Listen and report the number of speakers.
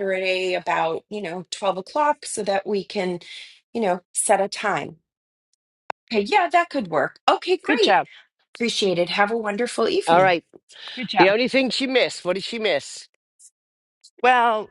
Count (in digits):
3